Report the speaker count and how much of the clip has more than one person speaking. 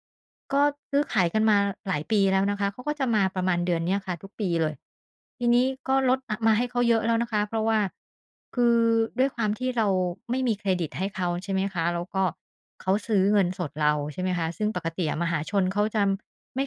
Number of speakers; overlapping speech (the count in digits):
1, no overlap